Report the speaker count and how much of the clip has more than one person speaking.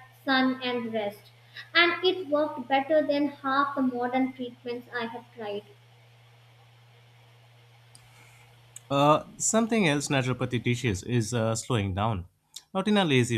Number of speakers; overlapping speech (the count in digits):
2, no overlap